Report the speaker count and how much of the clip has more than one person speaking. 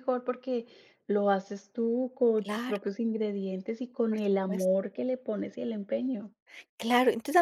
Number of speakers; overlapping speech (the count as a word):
two, about 12%